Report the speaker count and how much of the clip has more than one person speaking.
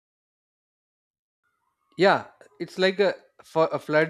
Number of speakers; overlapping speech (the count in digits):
1, no overlap